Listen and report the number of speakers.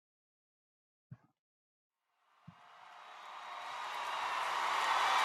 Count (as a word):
zero